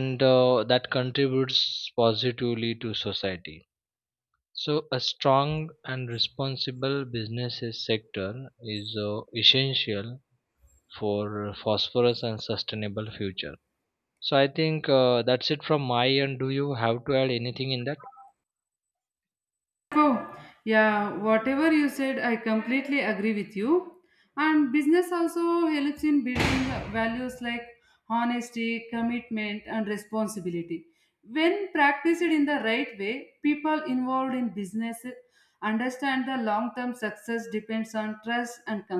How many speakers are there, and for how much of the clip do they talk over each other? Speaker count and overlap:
2, no overlap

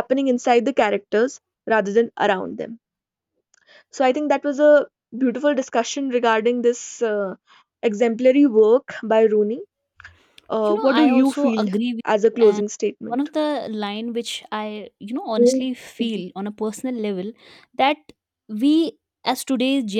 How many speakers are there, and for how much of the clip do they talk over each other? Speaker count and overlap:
2, about 12%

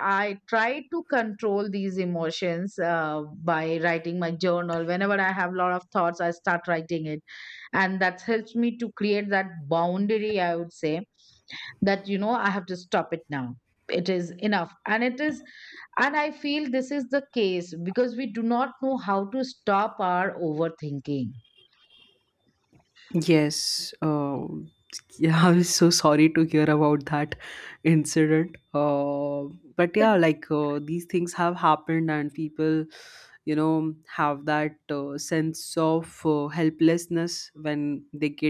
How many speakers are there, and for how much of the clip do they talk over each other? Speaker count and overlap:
2, no overlap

